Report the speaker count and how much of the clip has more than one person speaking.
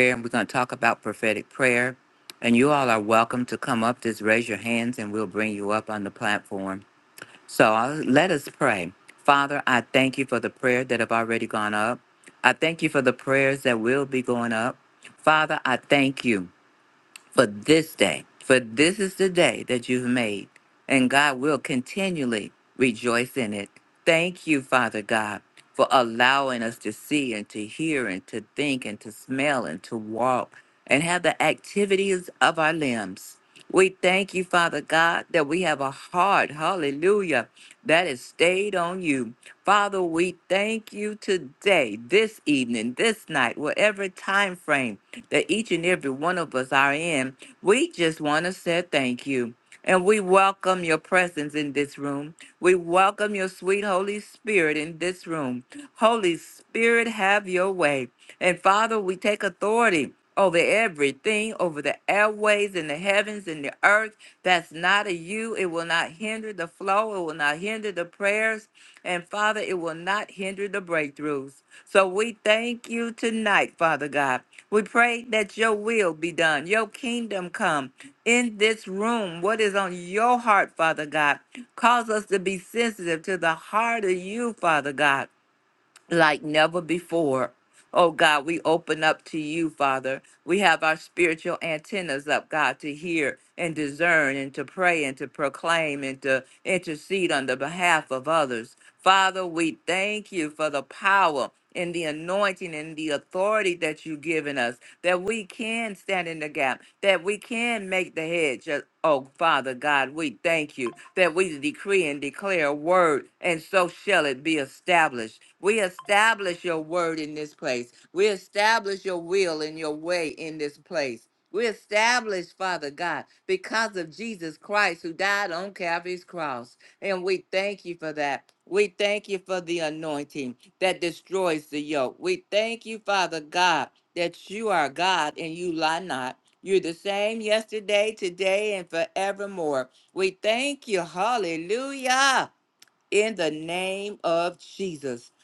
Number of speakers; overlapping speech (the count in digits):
1, no overlap